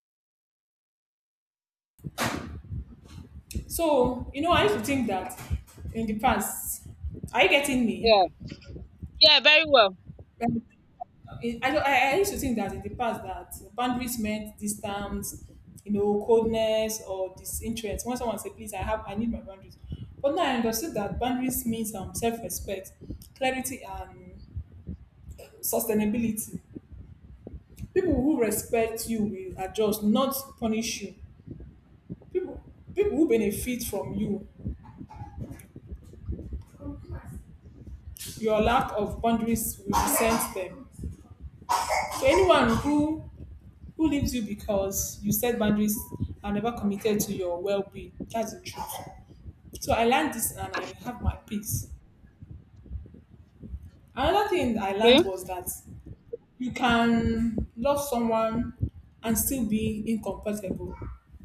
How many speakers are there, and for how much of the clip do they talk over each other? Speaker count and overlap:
two, about 1%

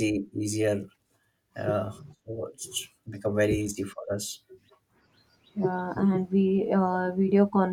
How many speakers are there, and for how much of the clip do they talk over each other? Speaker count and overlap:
two, no overlap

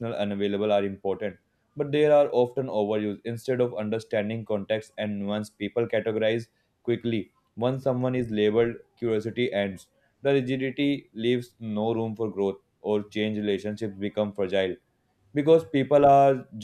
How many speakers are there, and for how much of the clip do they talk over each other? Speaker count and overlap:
one, no overlap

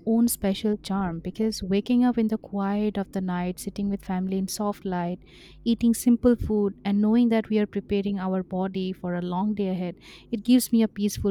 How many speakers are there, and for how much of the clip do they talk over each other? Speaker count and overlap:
one, no overlap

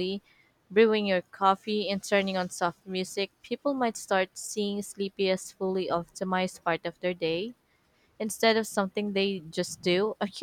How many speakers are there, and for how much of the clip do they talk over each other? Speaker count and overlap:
one, no overlap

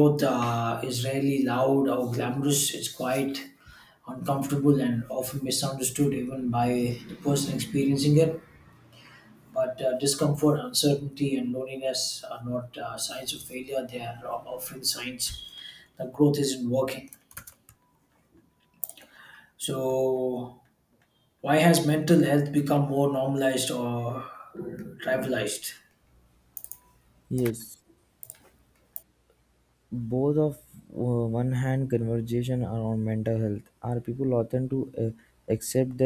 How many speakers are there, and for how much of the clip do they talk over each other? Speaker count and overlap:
two, no overlap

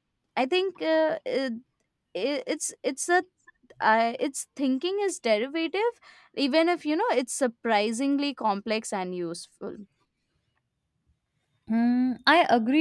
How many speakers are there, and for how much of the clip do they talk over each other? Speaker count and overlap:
two, no overlap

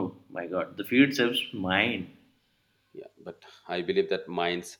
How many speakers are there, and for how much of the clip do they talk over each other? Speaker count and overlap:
two, no overlap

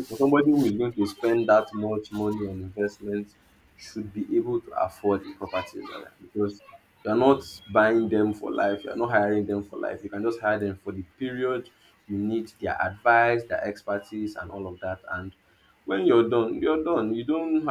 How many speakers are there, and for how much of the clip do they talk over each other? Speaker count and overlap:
one, no overlap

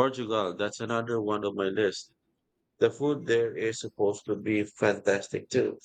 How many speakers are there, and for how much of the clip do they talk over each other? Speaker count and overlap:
one, no overlap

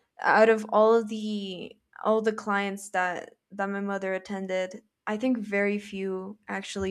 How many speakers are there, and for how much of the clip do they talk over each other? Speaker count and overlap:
one, no overlap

